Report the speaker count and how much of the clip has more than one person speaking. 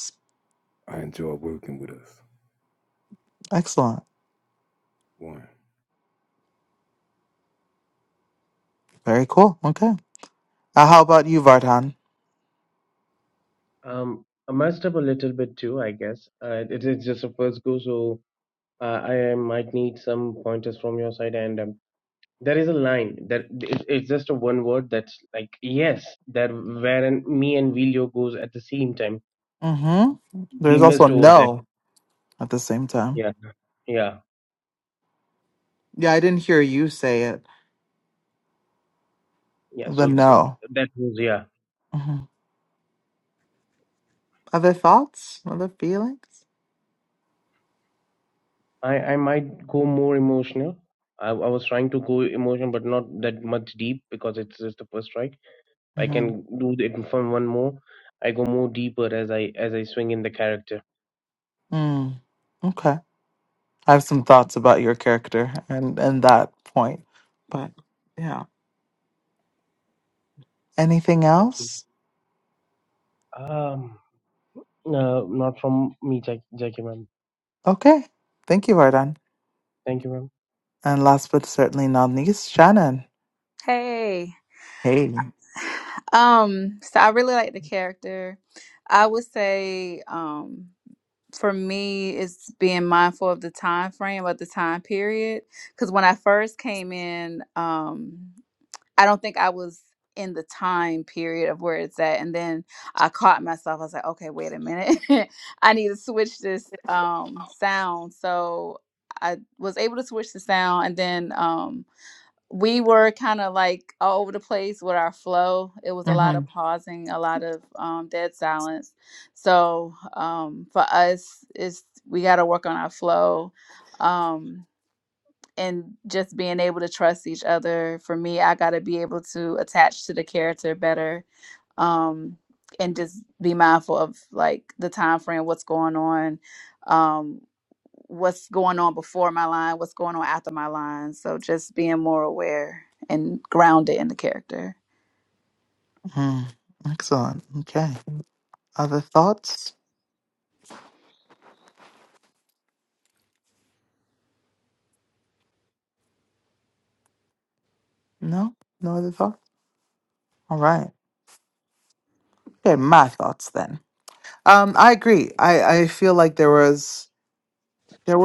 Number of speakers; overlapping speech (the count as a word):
four, about 1%